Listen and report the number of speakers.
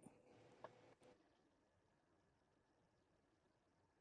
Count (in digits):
0